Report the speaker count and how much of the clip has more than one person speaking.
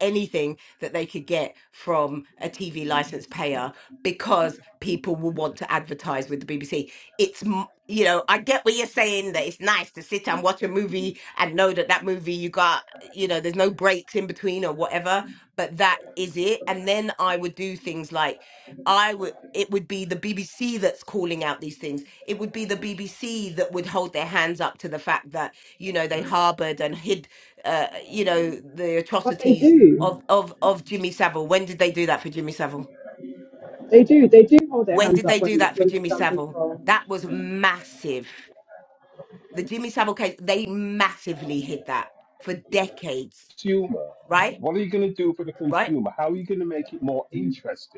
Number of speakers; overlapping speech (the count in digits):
3, about 5%